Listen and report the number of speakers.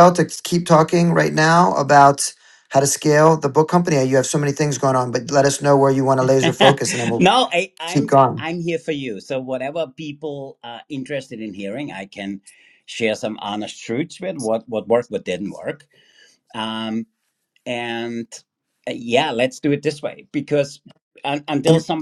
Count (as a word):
two